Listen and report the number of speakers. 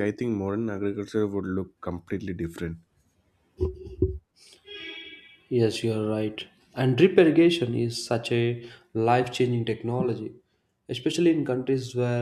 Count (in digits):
2